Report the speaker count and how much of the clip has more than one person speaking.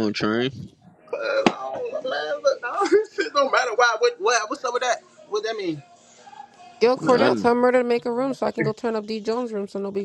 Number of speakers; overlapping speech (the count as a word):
three, about 5%